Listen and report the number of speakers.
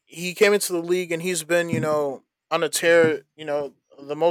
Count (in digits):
1